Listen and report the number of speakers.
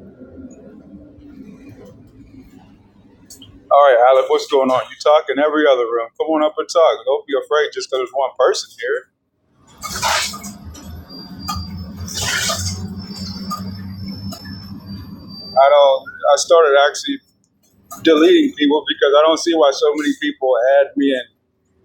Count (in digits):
1